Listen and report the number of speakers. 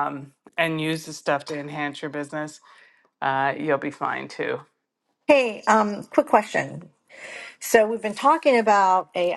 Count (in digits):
2